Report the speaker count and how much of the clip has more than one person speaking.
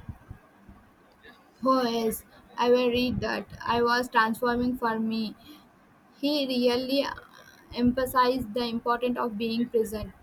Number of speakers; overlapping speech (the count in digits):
1, no overlap